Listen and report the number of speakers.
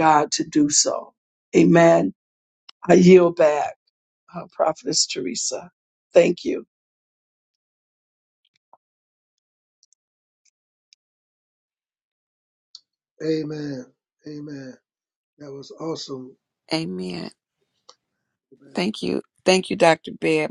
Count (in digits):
3